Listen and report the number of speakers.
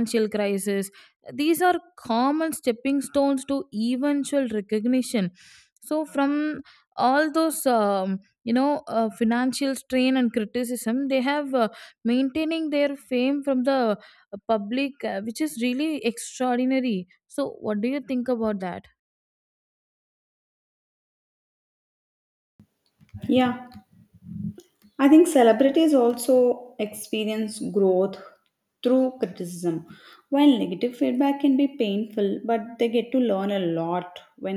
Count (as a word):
two